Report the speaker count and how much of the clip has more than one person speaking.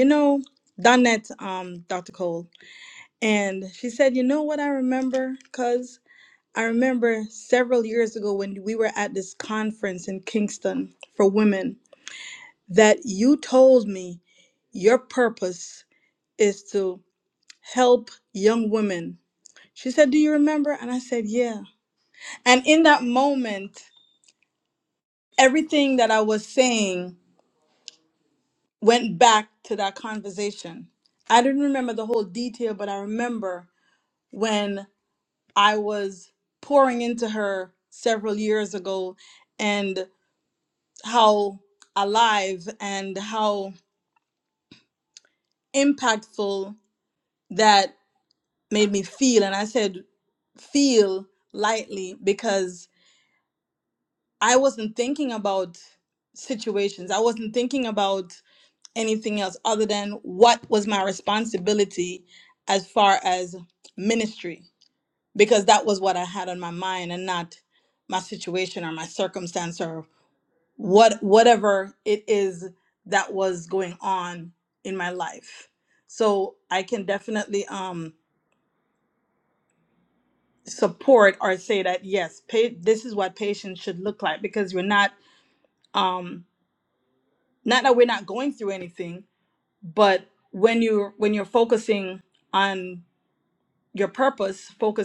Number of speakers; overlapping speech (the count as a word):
one, no overlap